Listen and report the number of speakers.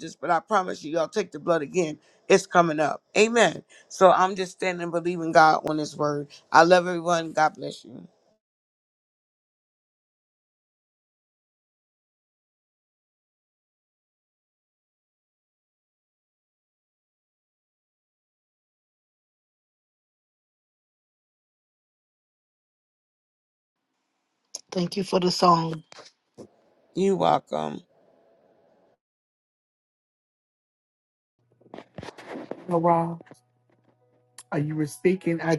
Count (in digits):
3